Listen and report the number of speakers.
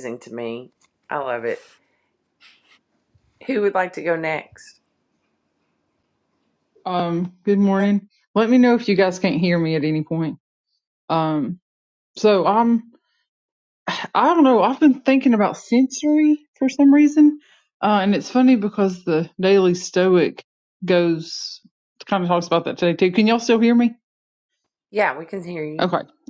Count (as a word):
two